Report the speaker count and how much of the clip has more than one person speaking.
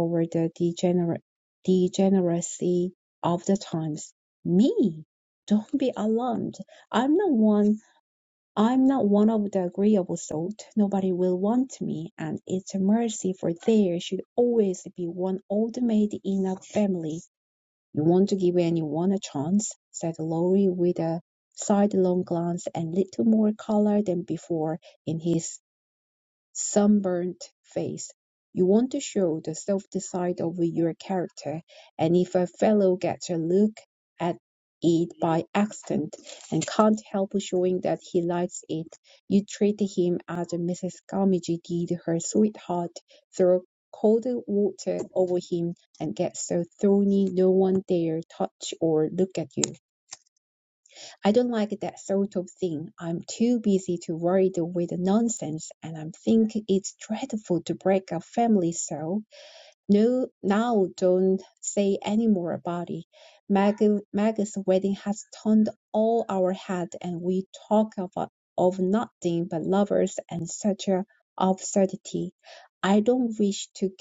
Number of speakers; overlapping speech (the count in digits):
1, no overlap